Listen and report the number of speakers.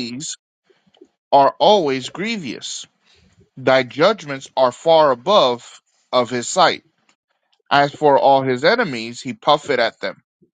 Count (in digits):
1